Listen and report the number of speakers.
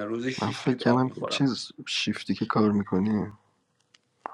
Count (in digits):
2